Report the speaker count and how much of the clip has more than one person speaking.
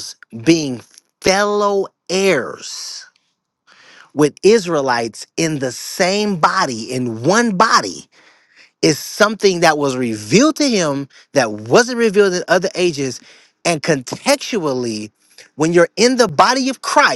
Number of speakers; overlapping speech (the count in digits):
1, no overlap